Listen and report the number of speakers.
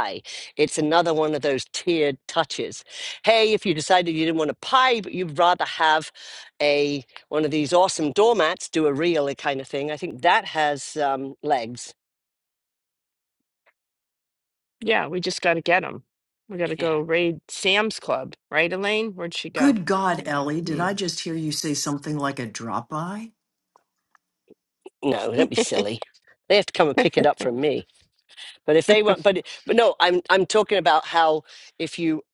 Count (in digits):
3